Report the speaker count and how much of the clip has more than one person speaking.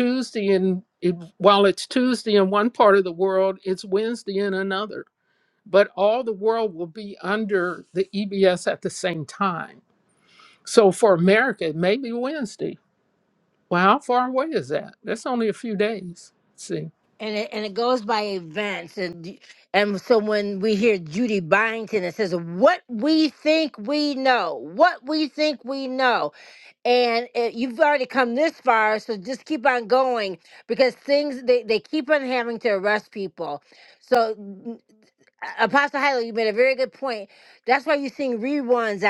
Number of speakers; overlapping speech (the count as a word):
two, no overlap